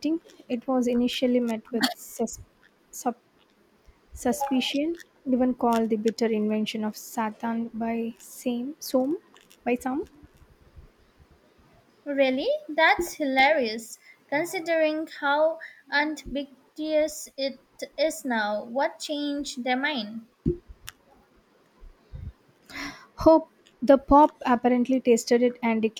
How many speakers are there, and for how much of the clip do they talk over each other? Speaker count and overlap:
2, no overlap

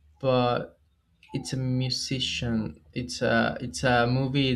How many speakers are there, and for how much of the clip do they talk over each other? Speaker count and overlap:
1, no overlap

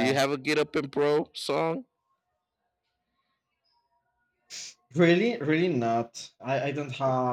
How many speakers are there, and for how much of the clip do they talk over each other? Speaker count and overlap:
2, about 3%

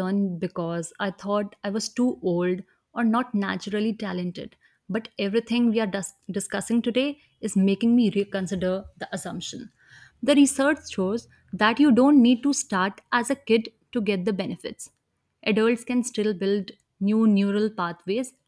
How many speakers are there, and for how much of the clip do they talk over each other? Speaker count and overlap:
1, no overlap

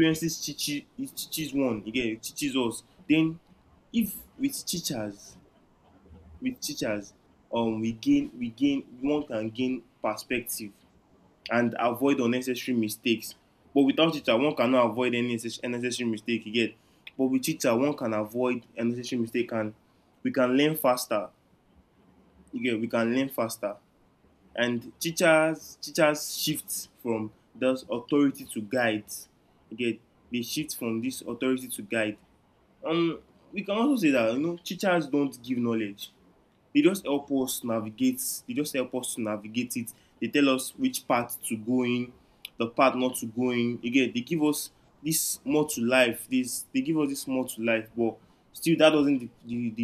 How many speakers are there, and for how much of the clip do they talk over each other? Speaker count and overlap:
1, no overlap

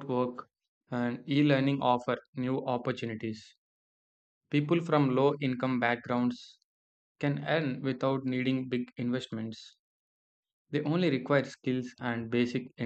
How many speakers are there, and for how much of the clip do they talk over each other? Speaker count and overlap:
1, no overlap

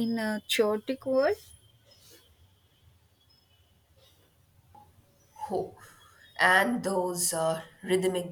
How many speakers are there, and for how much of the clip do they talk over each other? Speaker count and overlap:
2, no overlap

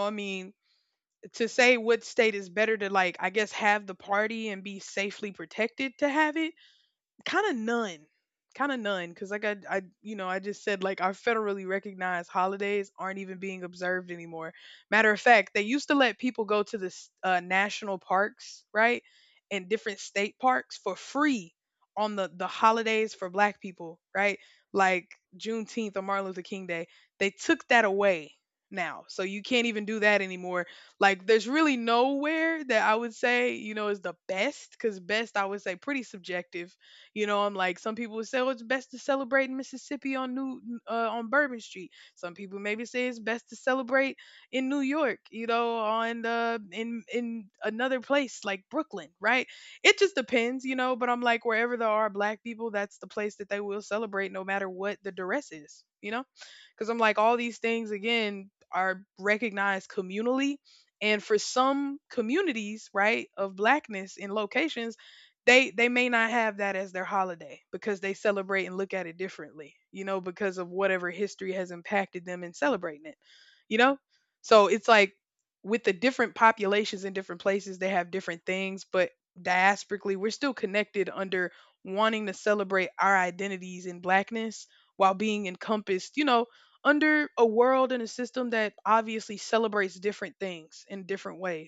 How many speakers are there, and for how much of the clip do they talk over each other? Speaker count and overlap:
1, no overlap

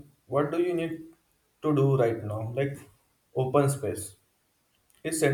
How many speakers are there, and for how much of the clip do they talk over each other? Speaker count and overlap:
1, no overlap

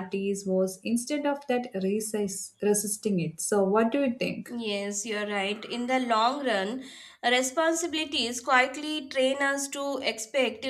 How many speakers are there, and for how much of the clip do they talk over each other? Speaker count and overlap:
2, under 1%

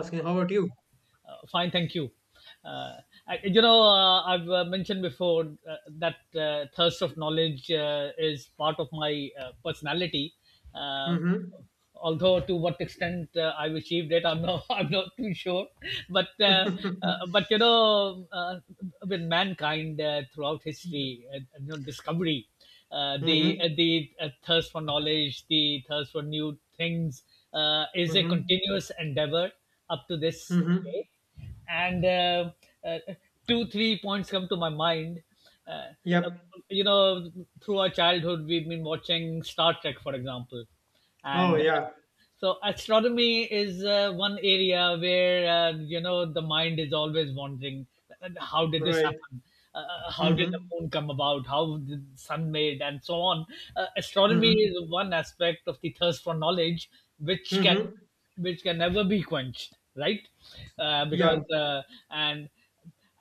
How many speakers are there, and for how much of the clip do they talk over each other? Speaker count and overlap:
2, about 6%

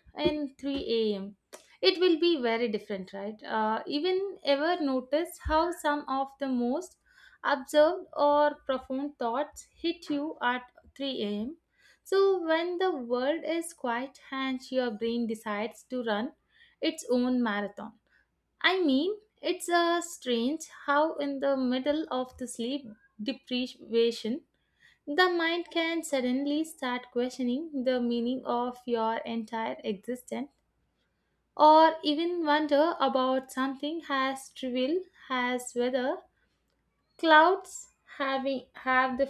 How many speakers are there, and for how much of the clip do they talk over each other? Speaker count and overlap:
1, no overlap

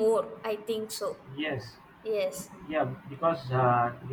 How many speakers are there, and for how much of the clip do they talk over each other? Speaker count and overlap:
2, no overlap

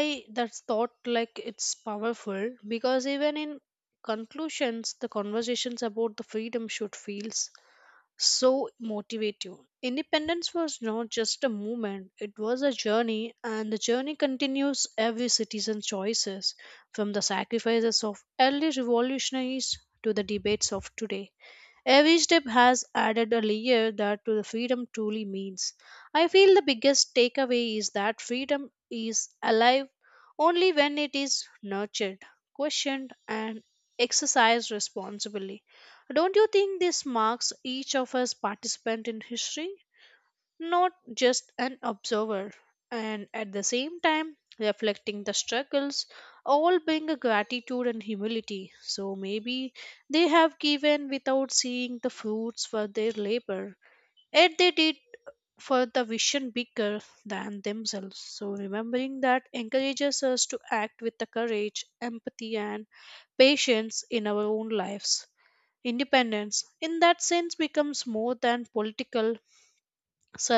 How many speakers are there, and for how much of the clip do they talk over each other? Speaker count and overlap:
1, no overlap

